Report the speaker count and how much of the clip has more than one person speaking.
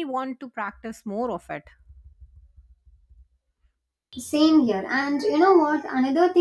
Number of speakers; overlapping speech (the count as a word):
two, no overlap